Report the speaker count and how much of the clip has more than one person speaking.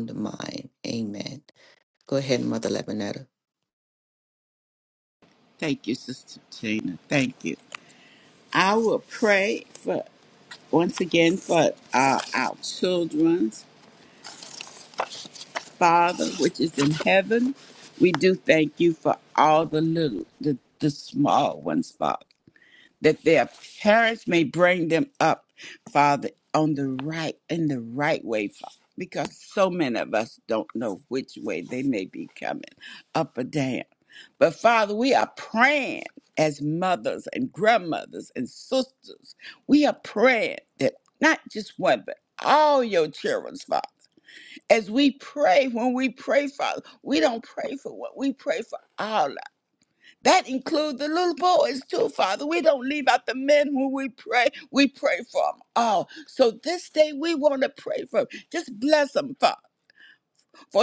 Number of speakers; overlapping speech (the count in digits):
2, no overlap